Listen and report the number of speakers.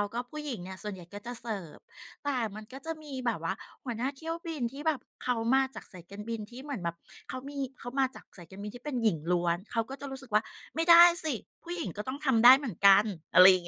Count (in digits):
1